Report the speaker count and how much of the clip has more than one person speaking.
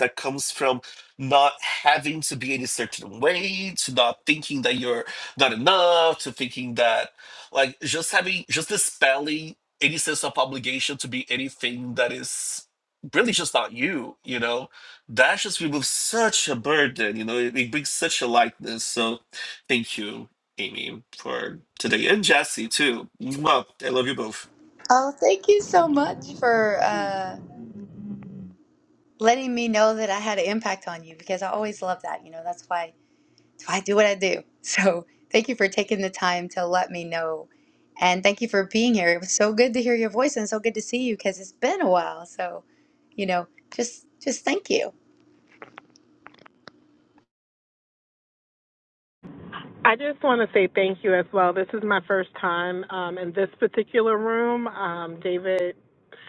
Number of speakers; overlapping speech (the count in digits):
3, no overlap